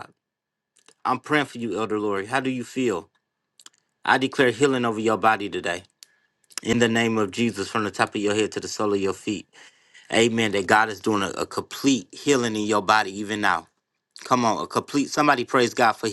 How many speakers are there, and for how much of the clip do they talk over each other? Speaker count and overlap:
one, no overlap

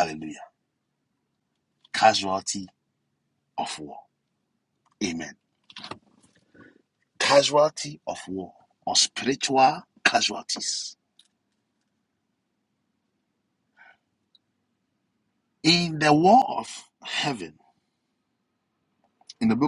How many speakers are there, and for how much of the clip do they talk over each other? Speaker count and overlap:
one, no overlap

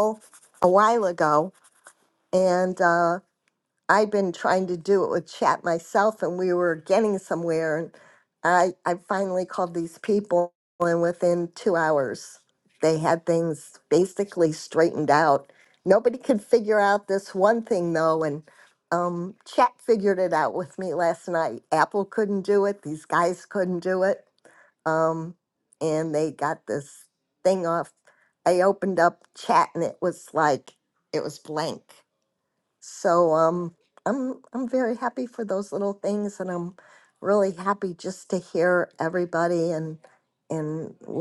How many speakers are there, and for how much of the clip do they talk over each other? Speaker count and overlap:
one, no overlap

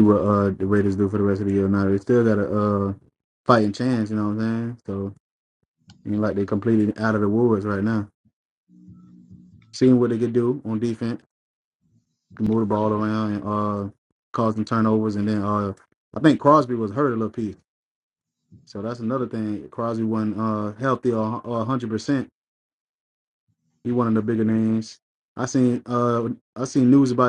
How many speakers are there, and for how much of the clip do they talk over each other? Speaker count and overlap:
one, no overlap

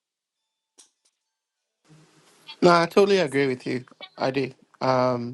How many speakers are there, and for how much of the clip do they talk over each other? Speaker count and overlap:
one, no overlap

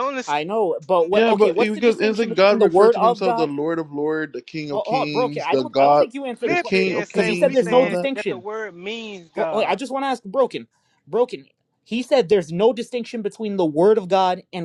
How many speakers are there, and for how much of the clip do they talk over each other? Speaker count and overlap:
three, about 41%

